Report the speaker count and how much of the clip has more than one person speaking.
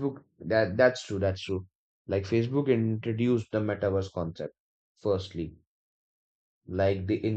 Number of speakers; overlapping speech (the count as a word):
one, no overlap